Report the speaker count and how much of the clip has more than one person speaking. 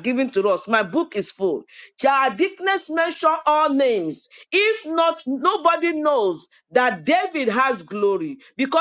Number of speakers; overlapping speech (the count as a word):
one, no overlap